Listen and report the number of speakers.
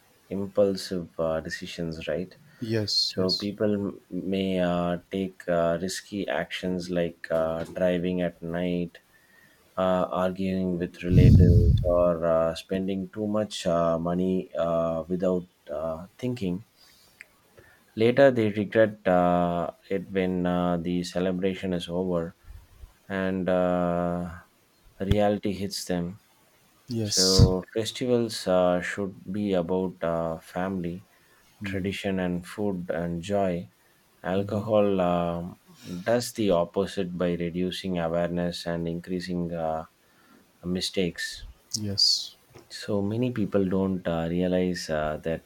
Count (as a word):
two